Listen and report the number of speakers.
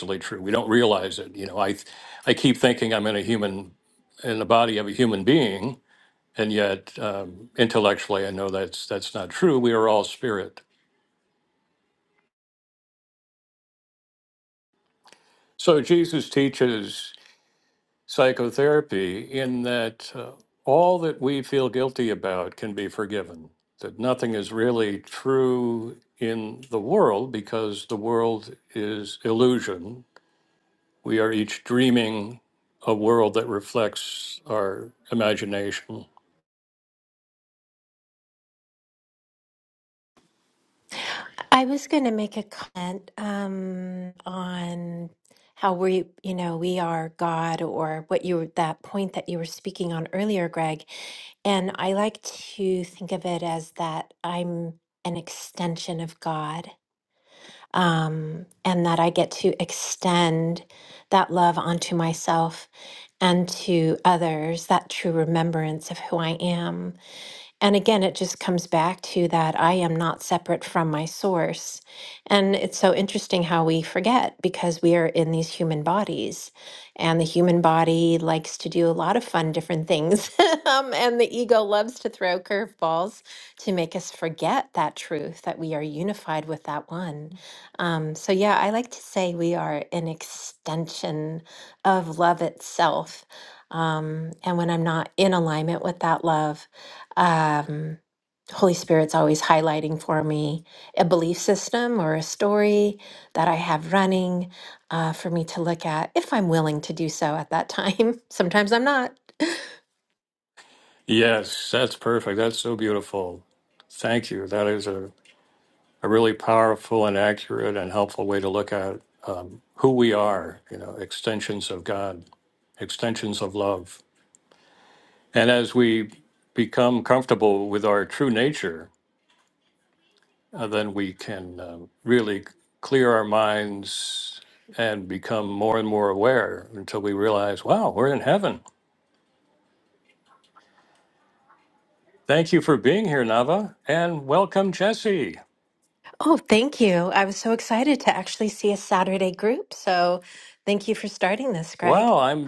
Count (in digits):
2